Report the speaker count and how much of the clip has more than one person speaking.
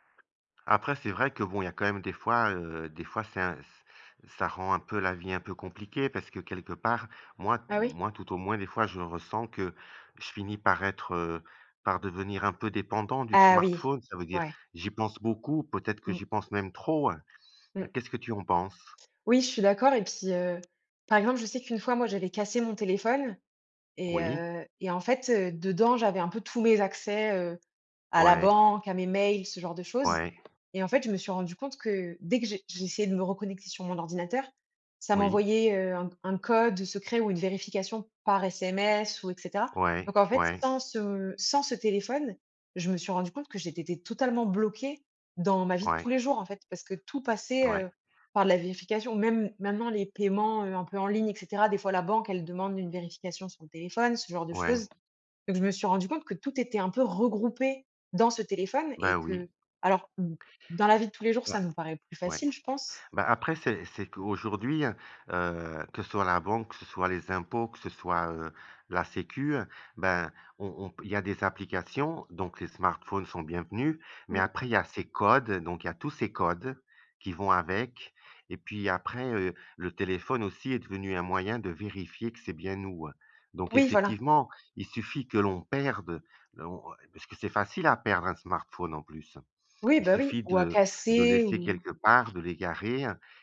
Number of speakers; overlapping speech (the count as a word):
two, about 7%